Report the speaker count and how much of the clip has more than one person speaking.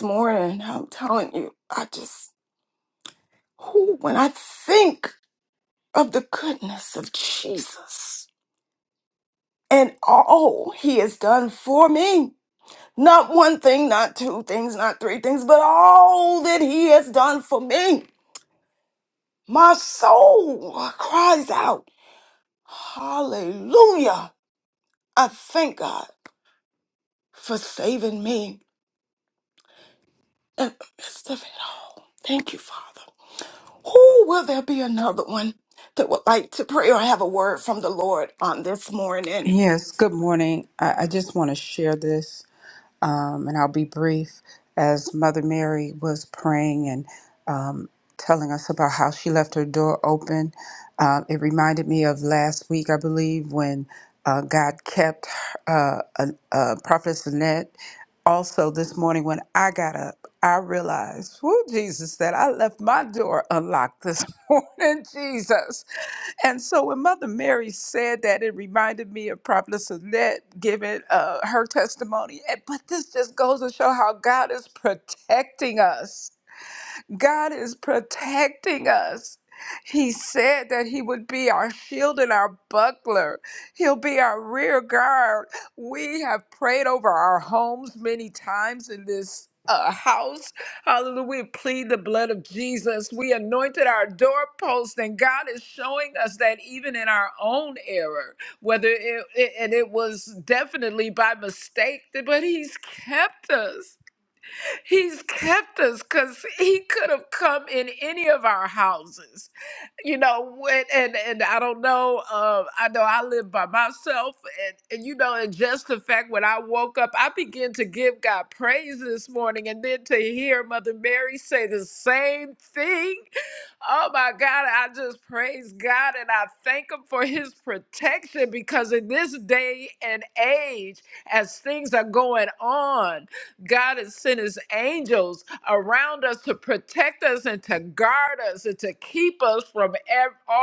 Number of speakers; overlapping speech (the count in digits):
2, under 1%